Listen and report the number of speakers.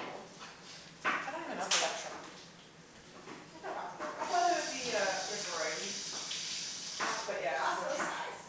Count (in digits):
2